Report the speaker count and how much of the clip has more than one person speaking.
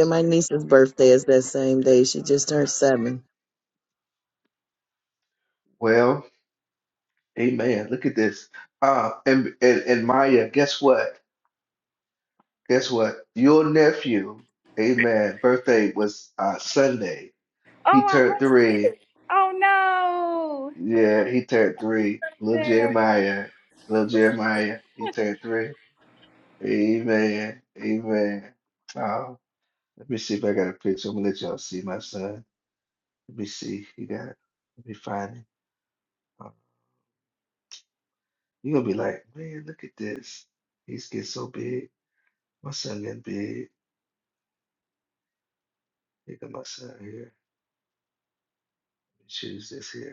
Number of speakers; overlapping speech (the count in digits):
3, about 2%